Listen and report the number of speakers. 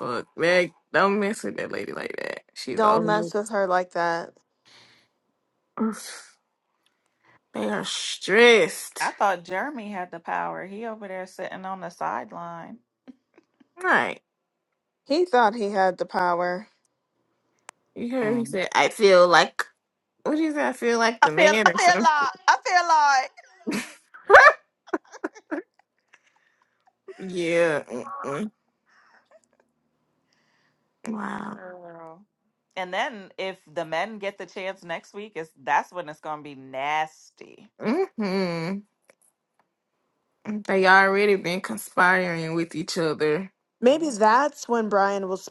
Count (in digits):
3